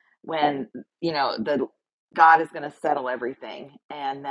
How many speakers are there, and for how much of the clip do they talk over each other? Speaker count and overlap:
1, no overlap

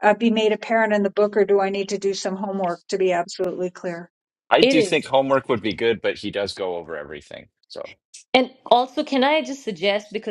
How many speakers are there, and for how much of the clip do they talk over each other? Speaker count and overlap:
3, about 4%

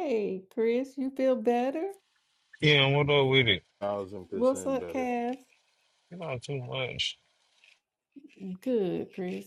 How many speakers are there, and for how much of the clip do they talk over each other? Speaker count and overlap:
3, about 8%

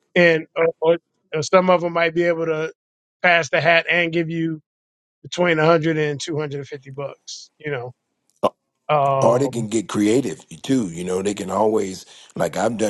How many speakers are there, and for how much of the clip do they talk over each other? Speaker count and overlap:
2, about 2%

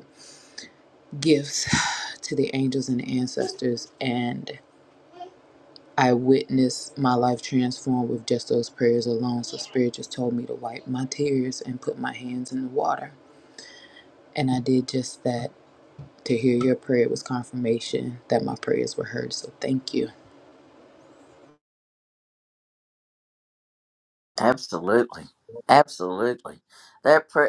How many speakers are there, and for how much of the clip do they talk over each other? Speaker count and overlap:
2, no overlap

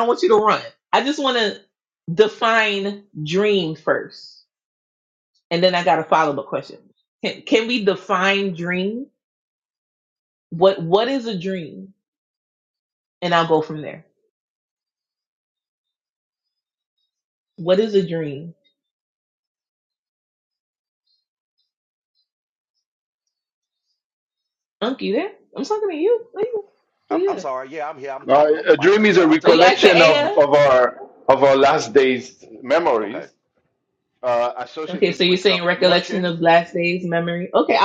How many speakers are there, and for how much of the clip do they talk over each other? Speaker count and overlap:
3, about 11%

